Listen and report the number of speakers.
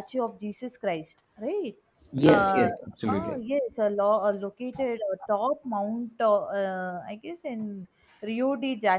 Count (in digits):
2